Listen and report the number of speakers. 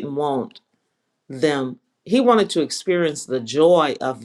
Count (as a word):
one